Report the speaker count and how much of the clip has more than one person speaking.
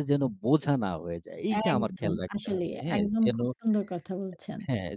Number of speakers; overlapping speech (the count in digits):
2, about 36%